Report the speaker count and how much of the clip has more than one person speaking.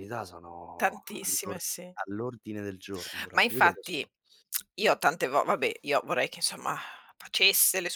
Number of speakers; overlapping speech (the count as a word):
two, about 17%